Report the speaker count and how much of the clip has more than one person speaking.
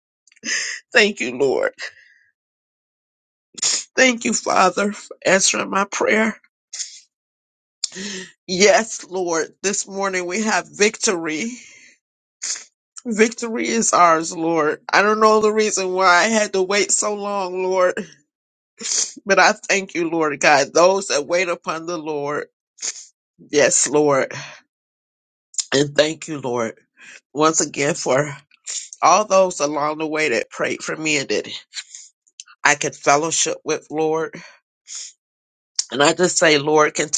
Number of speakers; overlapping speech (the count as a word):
one, no overlap